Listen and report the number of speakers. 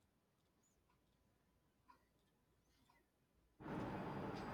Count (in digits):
0